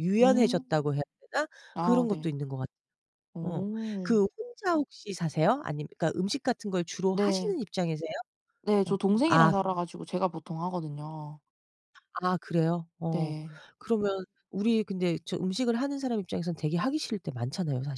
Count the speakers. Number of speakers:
2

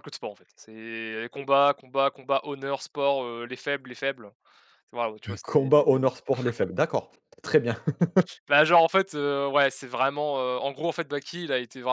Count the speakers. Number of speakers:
2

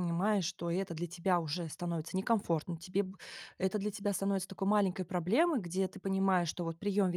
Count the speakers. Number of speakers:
1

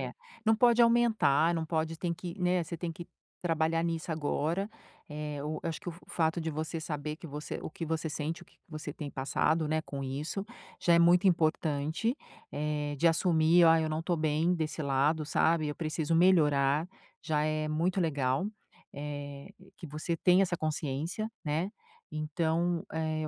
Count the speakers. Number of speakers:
1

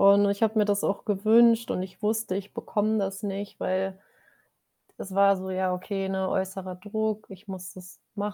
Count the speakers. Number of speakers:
1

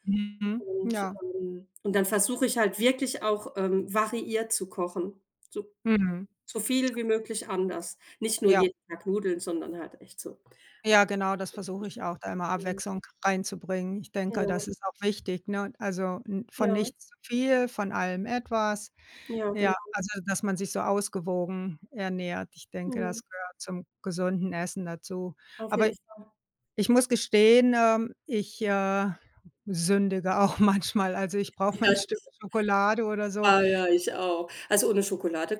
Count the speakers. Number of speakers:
2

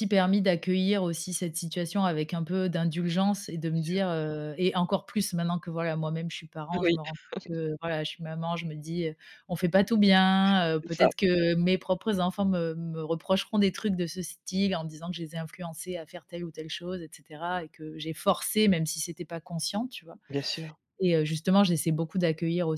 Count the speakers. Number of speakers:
2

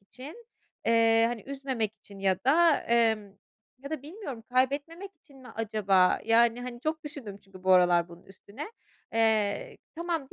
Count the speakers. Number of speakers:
1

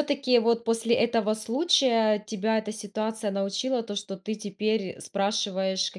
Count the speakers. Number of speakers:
1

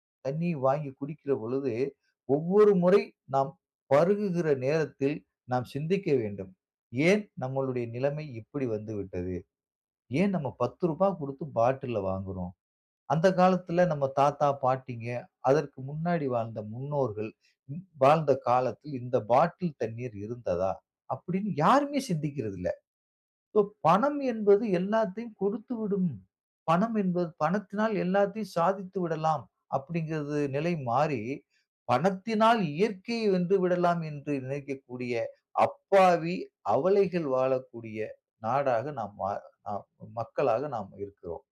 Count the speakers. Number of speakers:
1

